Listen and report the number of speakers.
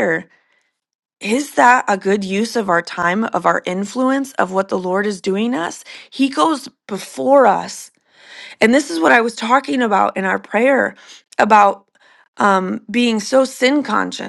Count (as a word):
one